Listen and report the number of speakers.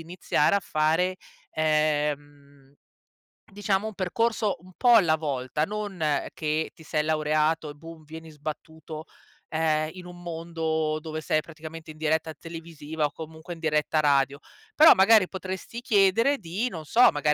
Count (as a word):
one